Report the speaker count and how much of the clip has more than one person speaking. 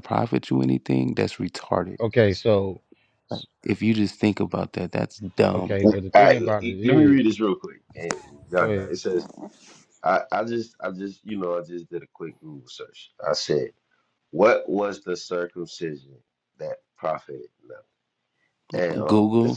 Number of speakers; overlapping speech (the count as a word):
three, about 13%